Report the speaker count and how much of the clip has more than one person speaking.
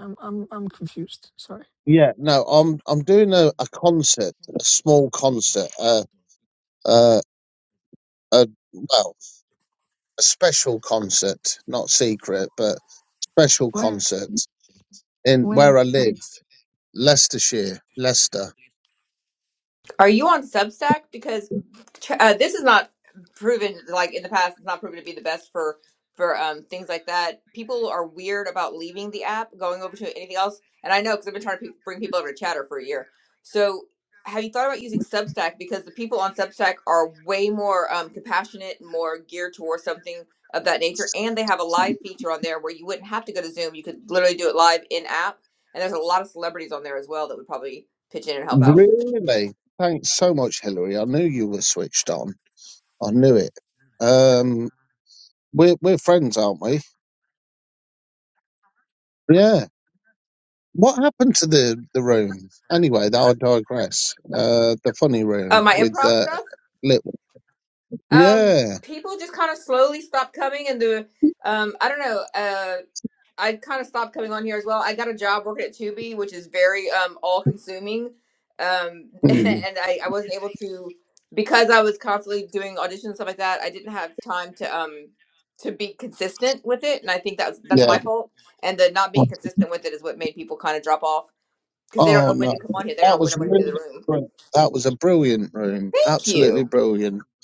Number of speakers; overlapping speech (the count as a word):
three, about 6%